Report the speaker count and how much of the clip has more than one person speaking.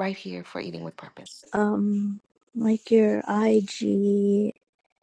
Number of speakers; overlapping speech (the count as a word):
two, no overlap